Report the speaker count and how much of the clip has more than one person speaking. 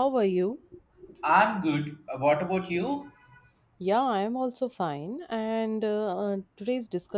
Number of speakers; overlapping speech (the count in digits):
2, no overlap